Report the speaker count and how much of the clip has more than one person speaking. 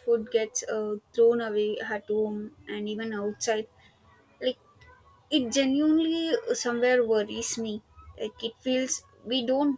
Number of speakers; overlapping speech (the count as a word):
one, no overlap